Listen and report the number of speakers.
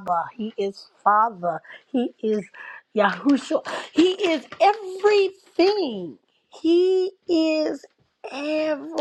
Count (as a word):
one